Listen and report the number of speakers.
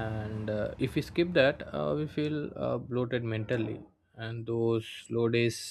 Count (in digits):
1